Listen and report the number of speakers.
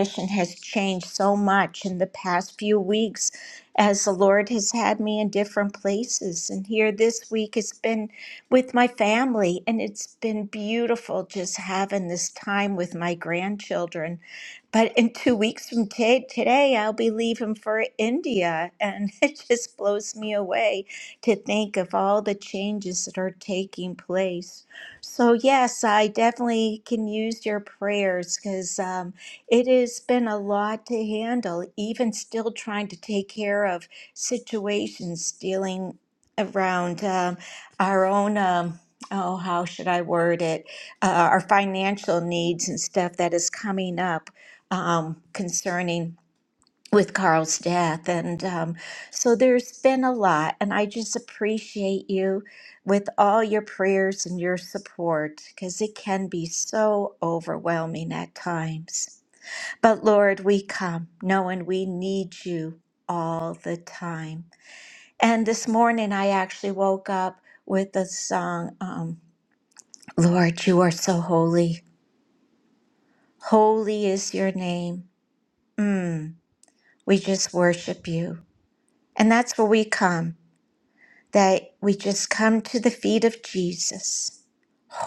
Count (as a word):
one